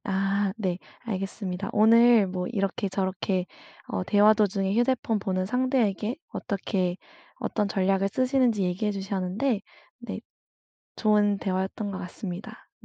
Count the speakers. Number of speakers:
1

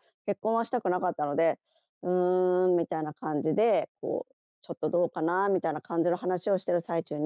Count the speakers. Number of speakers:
1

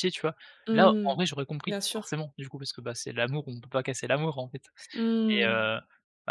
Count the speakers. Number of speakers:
2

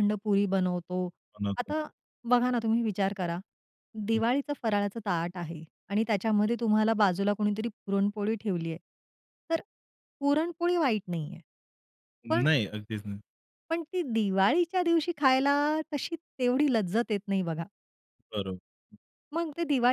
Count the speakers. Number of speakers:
2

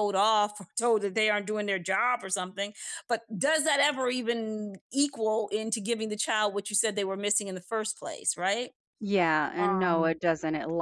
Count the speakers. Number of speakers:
2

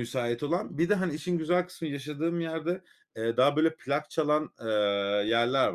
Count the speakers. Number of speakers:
1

